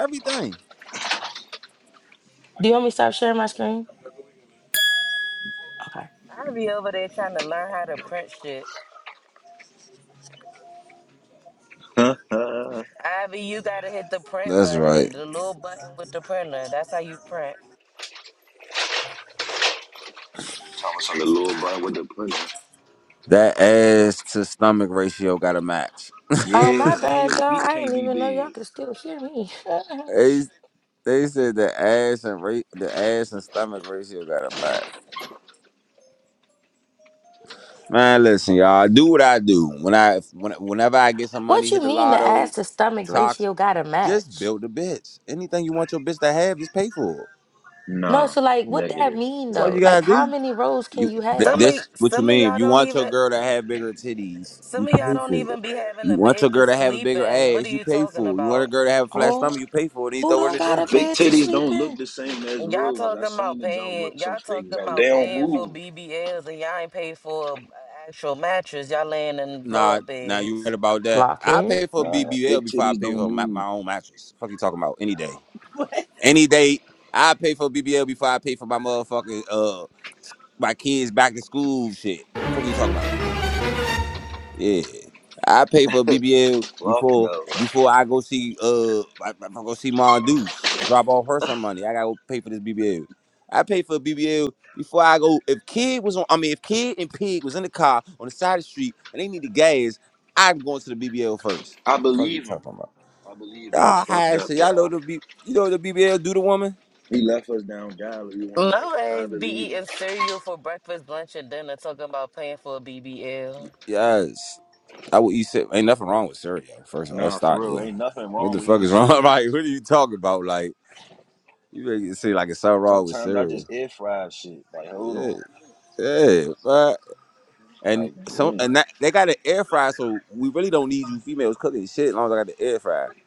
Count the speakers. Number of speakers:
4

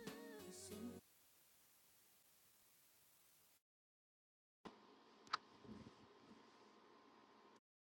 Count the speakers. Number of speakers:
0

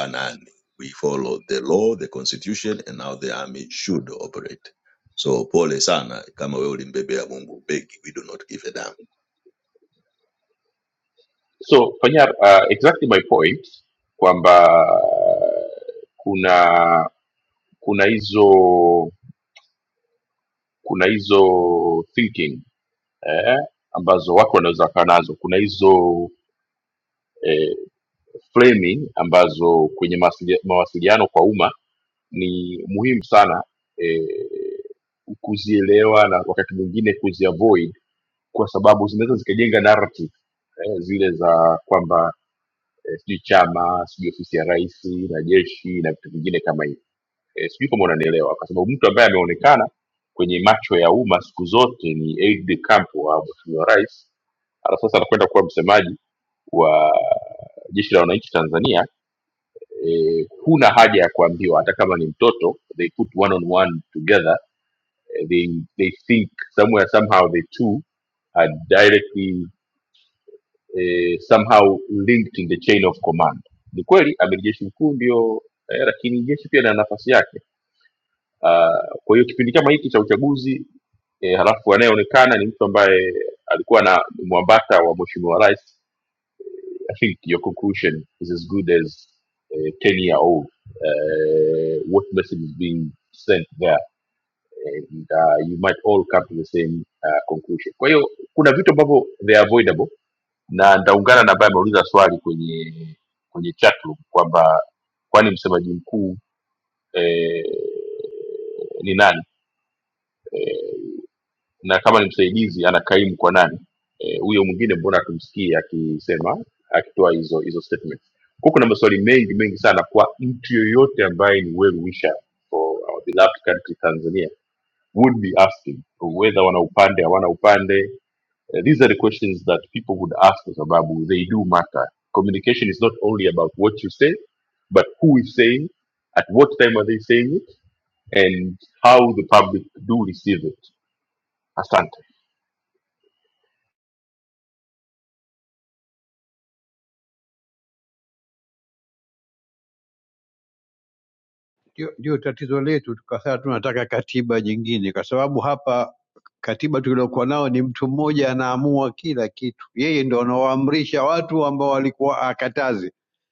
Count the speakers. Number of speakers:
3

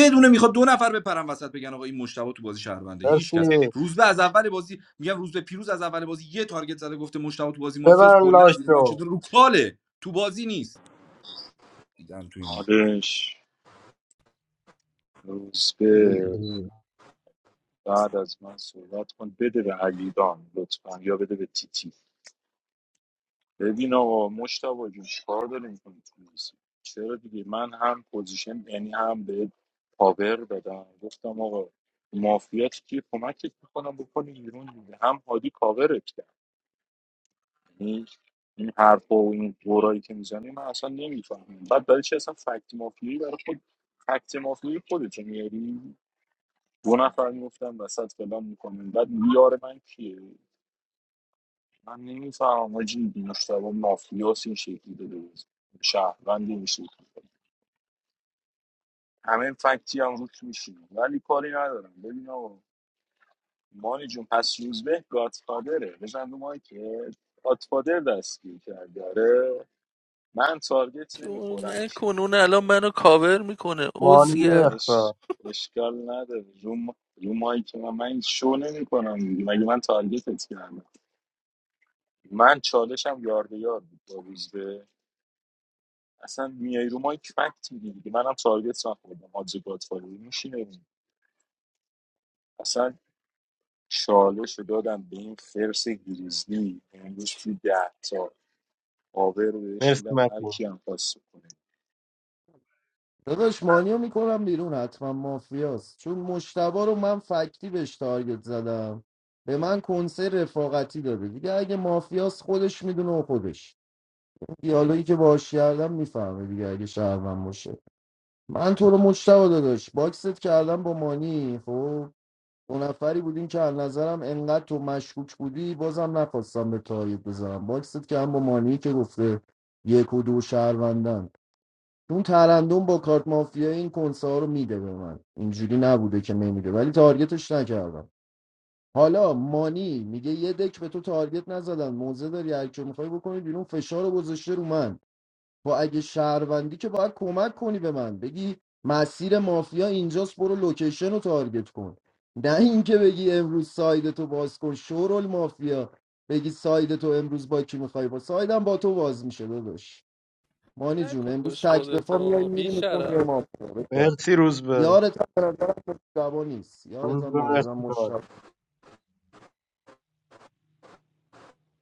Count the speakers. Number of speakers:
5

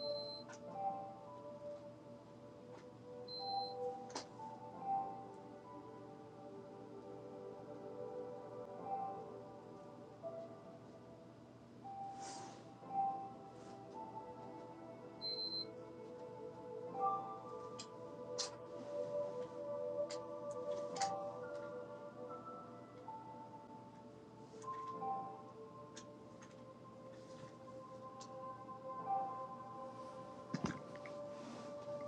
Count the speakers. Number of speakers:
0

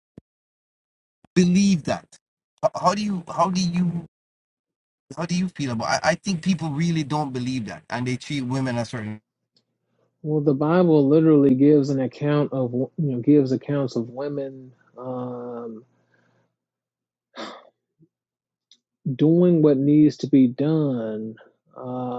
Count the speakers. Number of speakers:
2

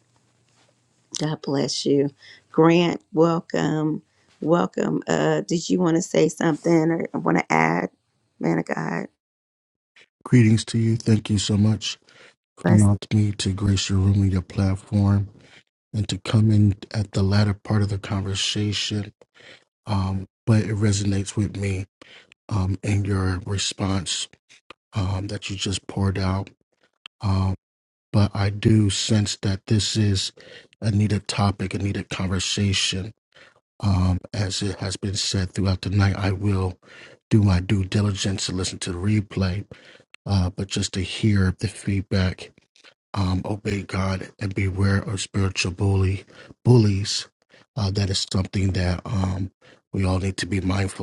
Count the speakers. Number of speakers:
2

